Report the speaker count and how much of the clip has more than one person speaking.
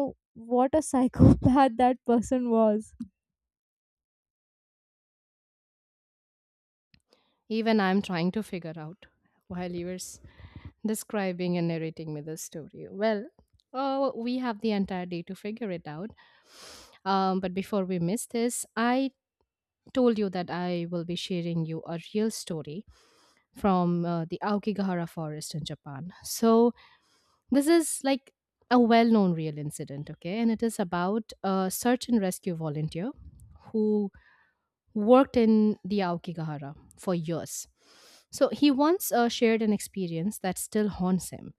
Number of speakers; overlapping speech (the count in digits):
2, no overlap